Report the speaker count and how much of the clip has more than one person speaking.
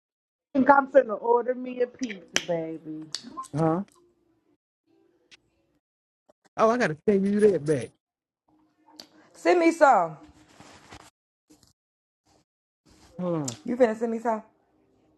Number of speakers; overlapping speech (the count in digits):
3, no overlap